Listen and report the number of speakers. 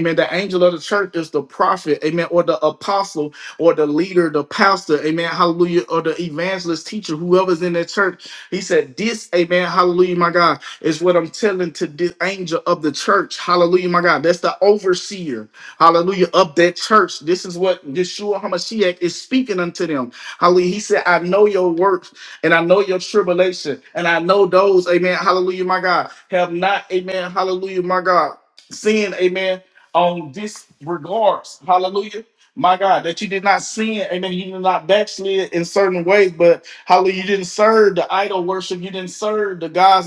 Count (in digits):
1